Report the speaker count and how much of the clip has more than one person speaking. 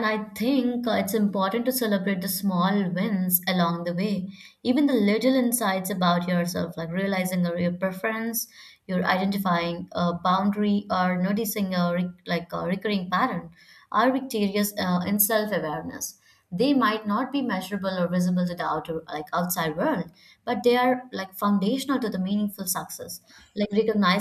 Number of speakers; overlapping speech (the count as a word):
one, no overlap